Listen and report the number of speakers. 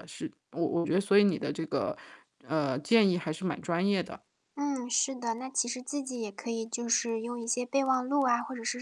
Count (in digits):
2